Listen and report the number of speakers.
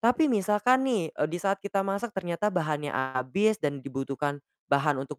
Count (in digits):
1